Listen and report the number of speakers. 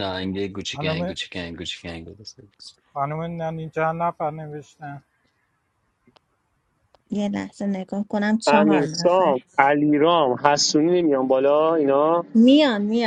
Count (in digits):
4